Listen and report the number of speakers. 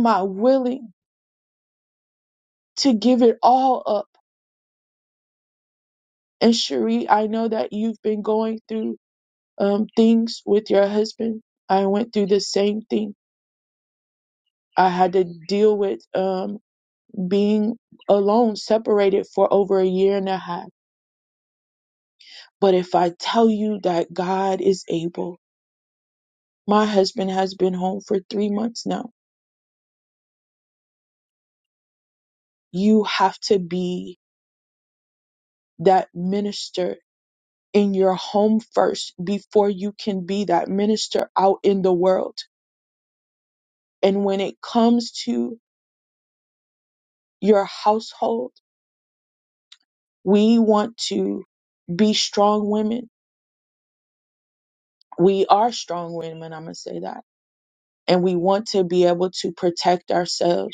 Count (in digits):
1